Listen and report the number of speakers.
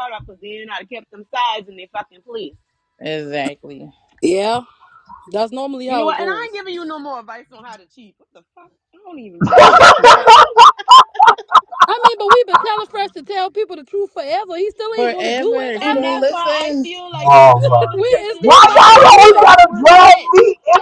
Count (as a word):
four